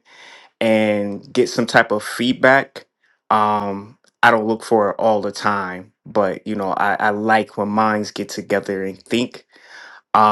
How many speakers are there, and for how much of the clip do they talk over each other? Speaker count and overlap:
1, no overlap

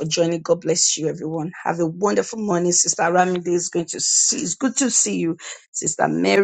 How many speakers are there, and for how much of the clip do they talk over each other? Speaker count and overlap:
1, no overlap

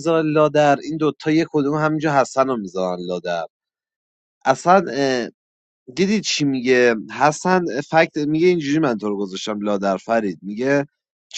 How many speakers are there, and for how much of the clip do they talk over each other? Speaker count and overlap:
1, no overlap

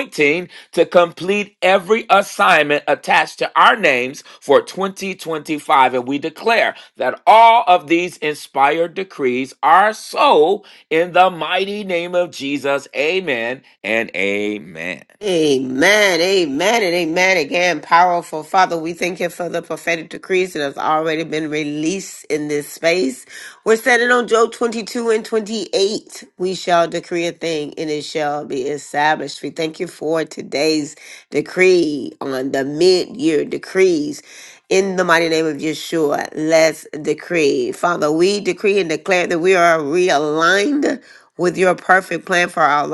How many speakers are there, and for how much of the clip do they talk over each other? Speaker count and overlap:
2, no overlap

